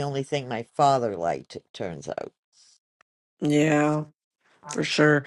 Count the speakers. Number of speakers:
two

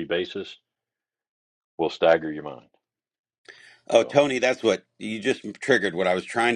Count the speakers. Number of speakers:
two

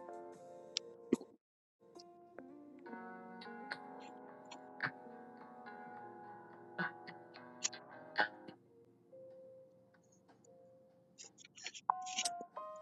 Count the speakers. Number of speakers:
zero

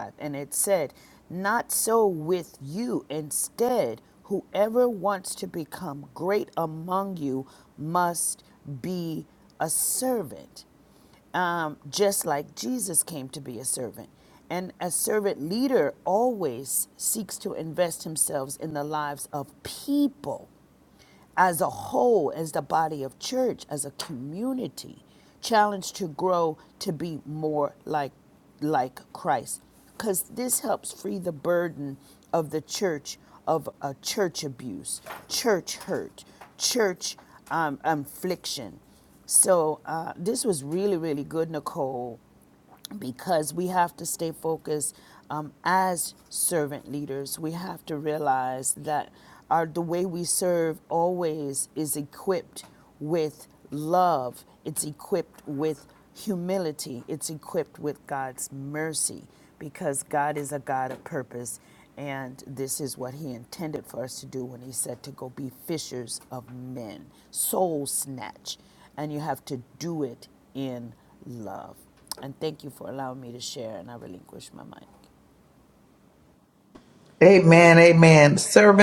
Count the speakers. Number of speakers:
two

